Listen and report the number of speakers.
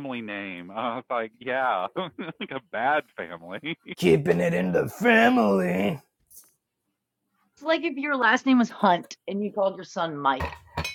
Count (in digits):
3